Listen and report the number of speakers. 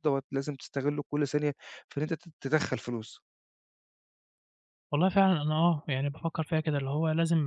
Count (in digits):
2